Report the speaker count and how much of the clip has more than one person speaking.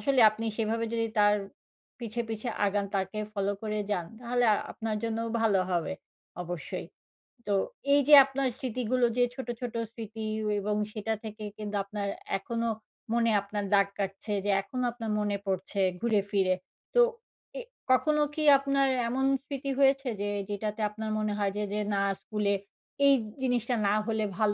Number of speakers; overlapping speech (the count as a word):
one, no overlap